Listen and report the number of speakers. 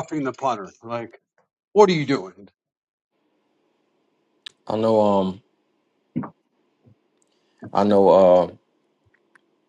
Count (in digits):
2